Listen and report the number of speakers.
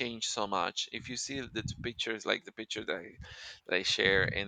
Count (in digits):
1